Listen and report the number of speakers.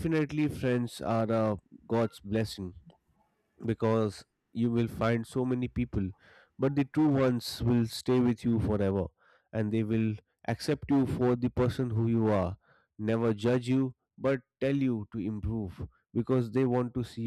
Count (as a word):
one